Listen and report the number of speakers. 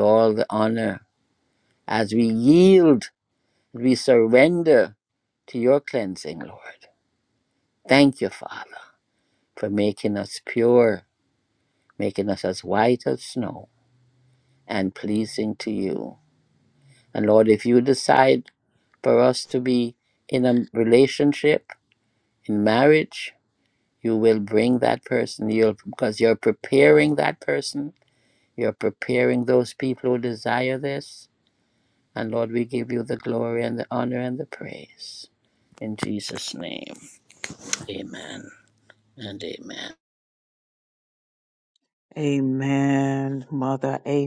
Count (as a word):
two